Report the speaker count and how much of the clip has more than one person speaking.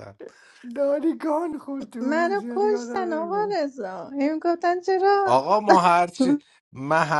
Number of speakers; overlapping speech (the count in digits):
3, about 22%